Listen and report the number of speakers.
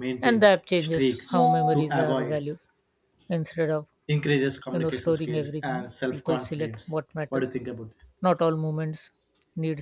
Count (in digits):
2